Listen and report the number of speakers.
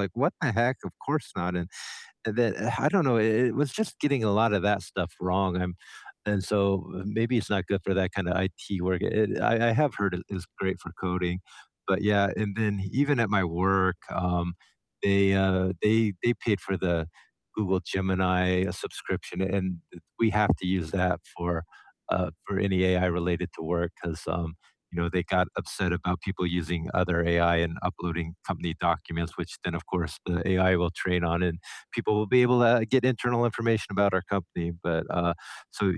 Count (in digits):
1